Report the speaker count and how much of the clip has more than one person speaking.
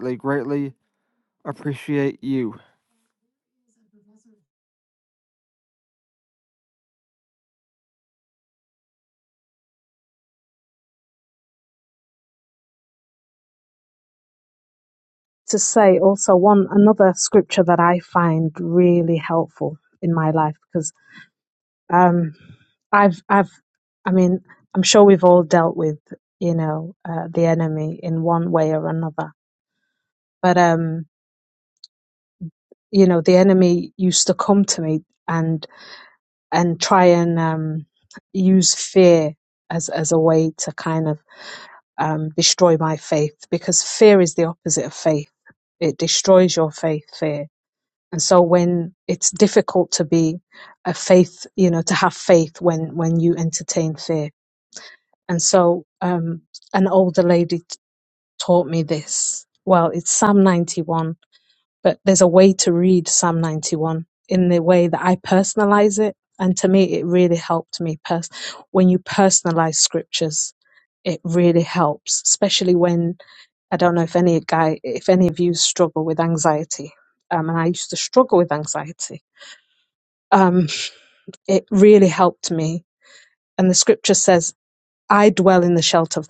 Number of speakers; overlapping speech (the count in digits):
2, no overlap